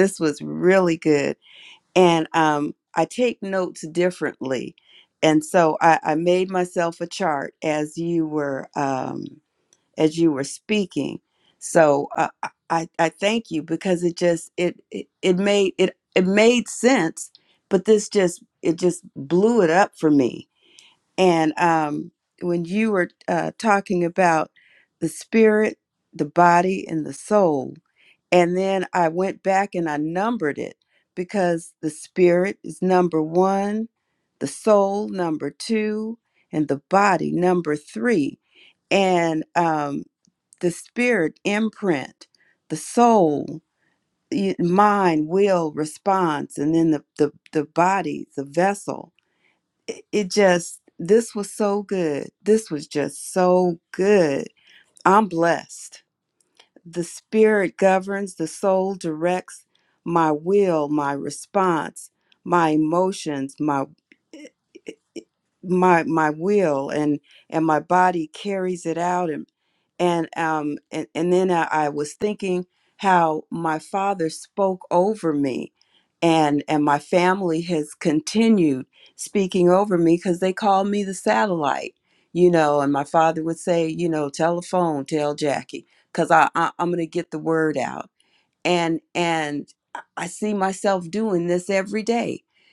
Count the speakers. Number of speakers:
1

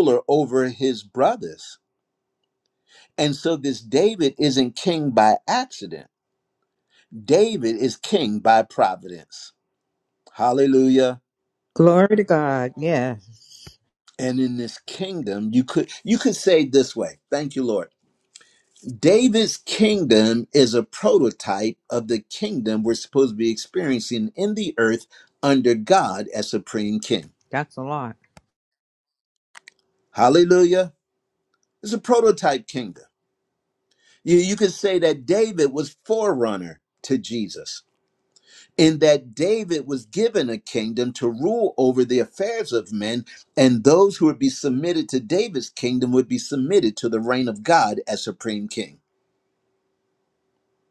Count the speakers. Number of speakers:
2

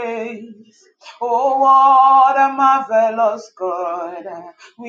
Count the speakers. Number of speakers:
1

